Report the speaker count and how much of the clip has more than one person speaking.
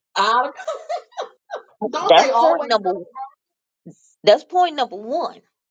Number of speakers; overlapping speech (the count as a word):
two, about 18%